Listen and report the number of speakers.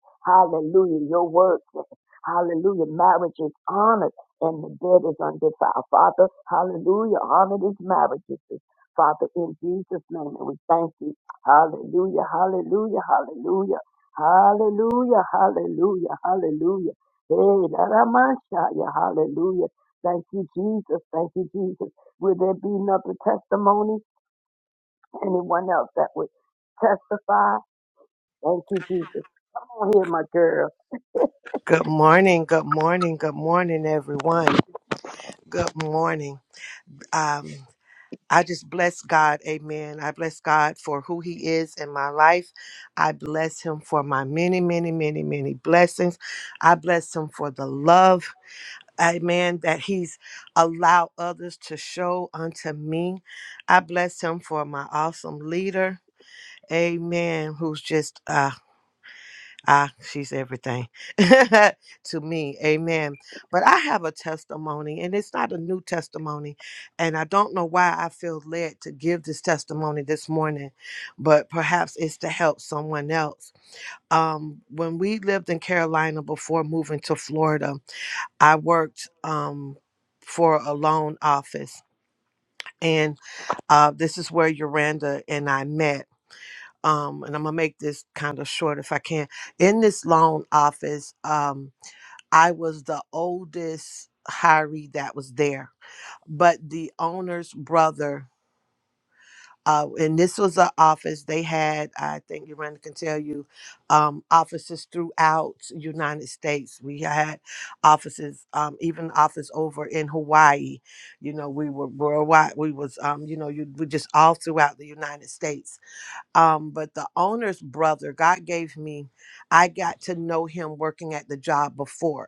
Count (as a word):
two